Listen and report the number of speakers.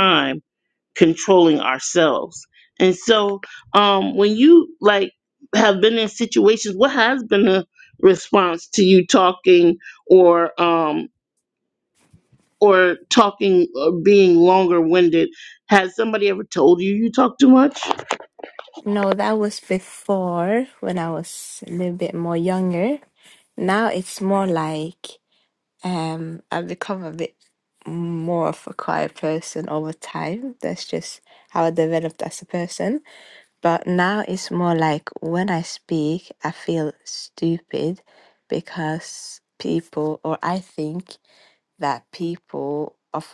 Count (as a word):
two